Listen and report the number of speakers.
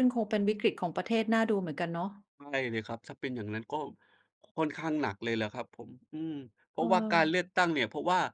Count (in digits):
2